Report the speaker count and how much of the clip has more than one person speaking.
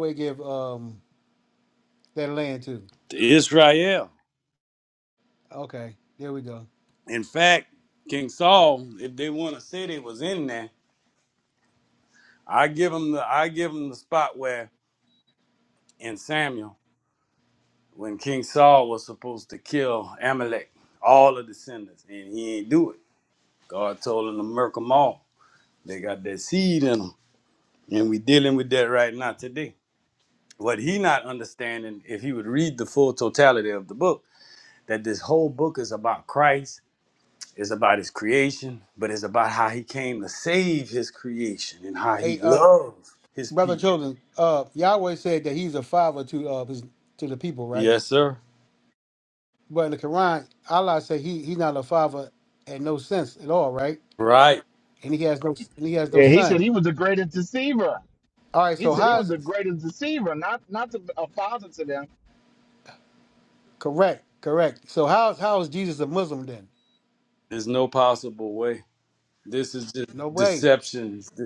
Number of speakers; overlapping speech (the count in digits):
3, about 3%